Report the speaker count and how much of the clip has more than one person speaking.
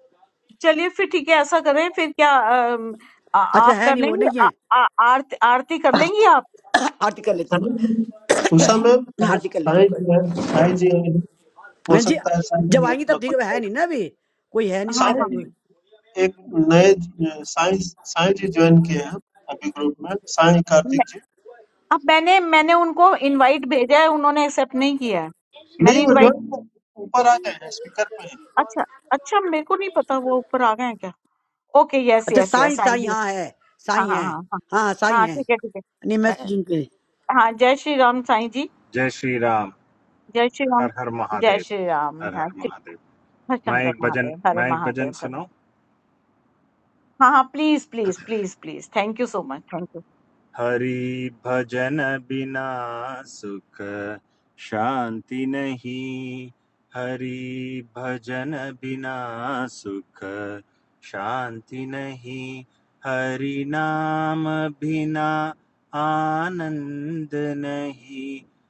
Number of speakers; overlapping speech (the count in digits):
4, about 13%